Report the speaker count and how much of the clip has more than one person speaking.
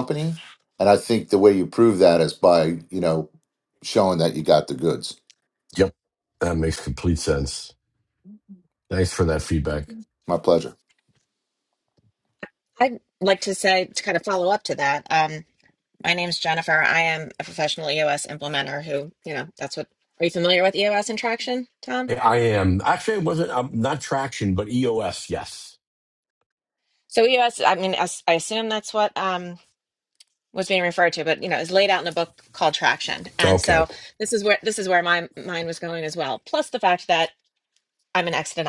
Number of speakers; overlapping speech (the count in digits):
3, about 1%